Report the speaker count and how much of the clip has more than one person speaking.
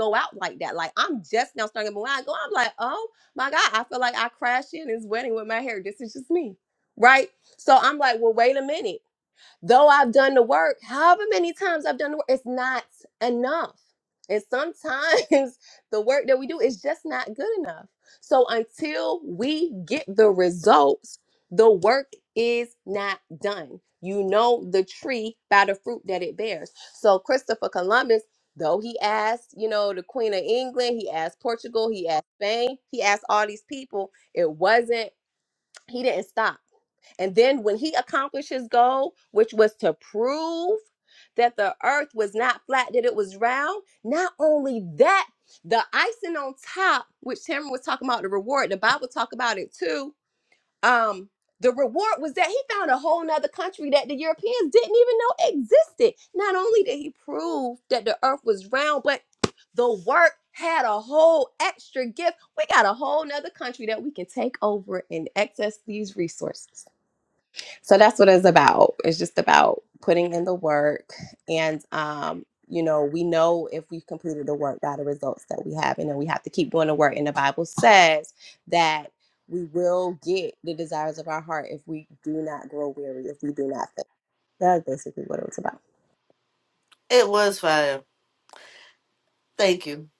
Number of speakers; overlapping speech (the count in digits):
2, no overlap